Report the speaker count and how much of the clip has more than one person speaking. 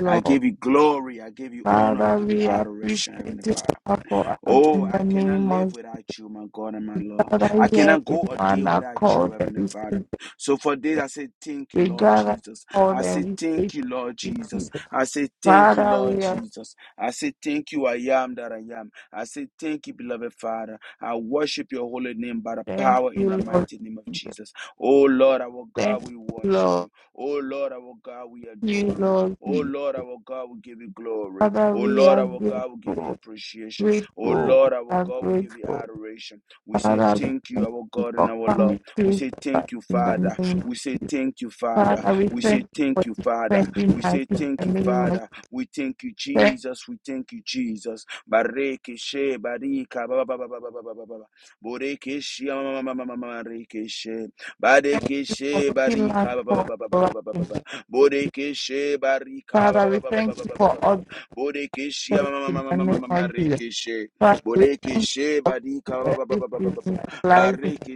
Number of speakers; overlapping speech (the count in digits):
2, about 46%